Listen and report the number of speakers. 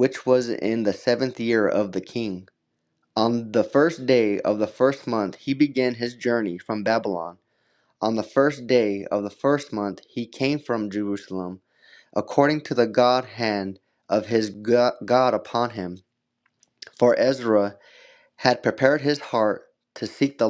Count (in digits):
1